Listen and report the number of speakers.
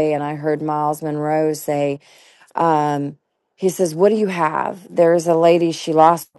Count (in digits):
1